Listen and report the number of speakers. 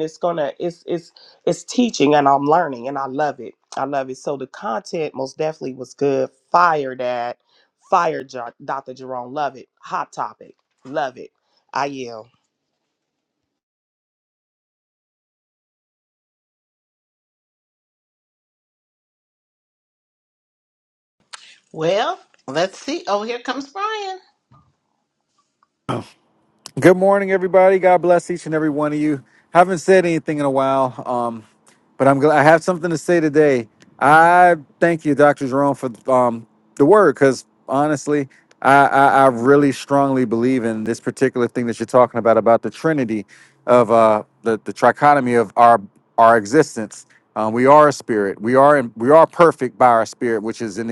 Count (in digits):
3